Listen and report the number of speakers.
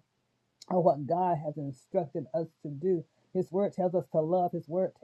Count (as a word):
one